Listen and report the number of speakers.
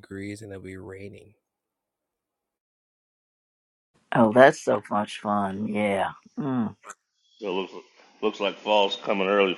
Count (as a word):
three